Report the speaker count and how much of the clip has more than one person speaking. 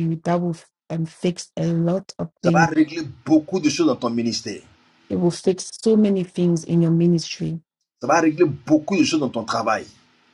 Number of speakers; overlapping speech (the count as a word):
two, about 2%